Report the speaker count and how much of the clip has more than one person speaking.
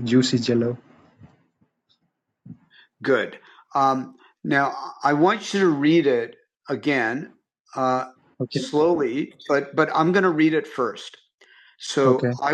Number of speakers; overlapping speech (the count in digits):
2, about 3%